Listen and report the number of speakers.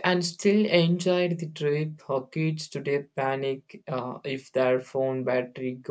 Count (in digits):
1